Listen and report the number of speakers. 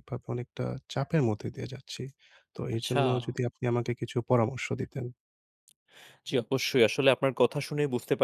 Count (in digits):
2